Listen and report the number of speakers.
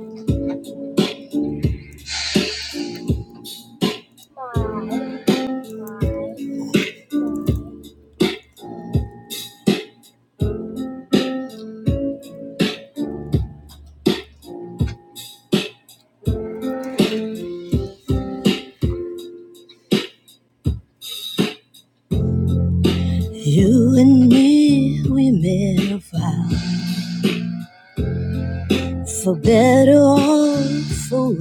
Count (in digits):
1